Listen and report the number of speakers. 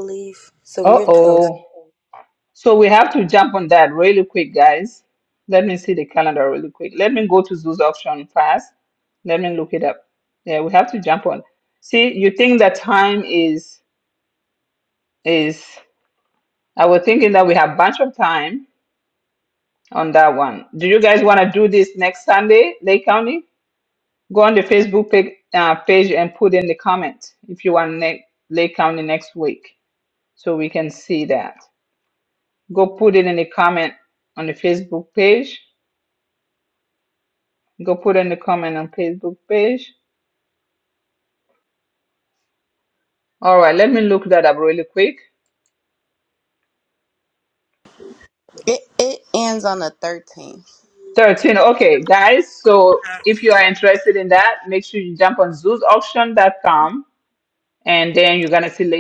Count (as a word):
three